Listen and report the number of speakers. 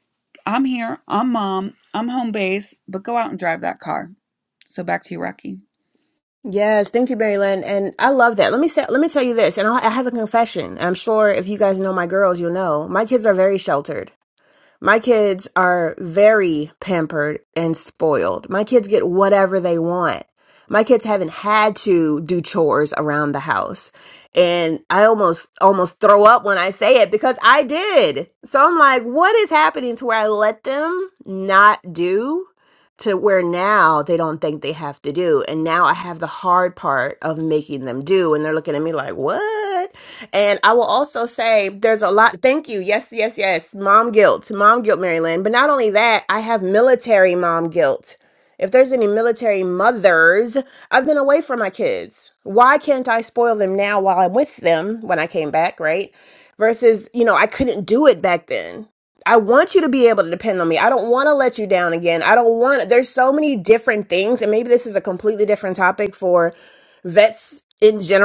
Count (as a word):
two